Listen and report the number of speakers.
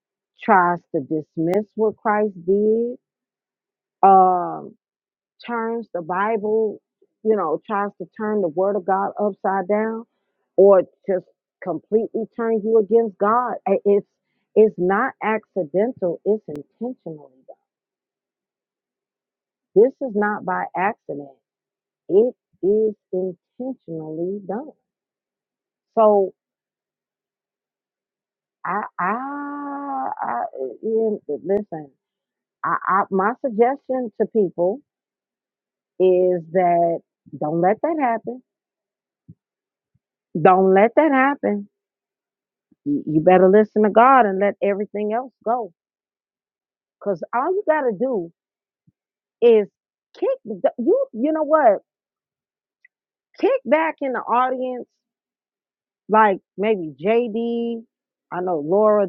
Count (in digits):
1